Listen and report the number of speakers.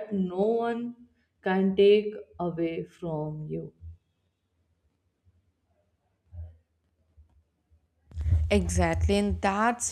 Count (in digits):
2